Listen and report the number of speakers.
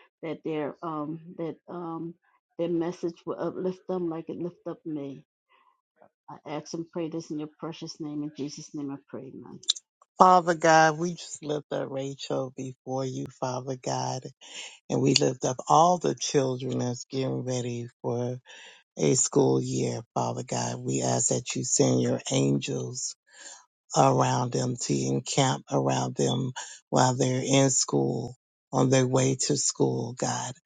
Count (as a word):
two